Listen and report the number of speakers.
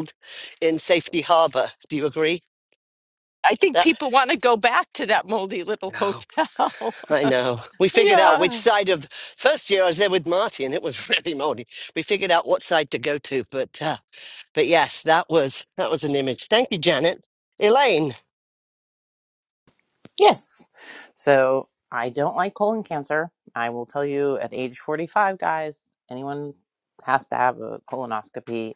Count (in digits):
3